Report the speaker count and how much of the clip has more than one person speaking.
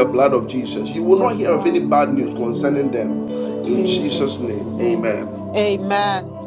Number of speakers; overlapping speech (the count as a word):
two, about 29%